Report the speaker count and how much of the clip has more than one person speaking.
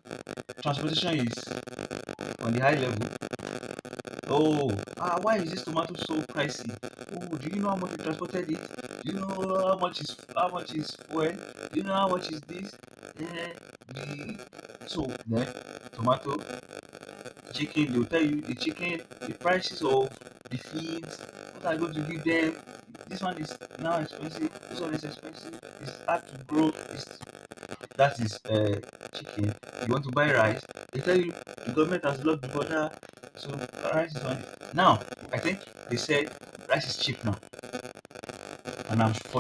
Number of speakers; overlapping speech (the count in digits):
1, no overlap